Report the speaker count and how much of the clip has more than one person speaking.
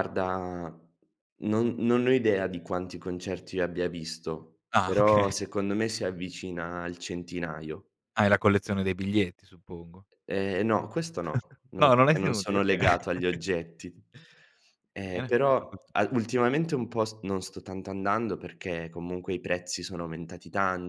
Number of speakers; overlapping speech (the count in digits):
2, about 11%